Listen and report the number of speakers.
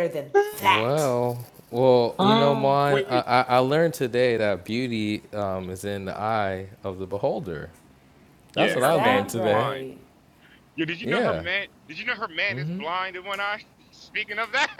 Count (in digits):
3